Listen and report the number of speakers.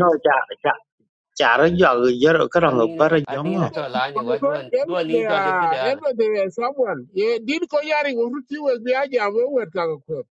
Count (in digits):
3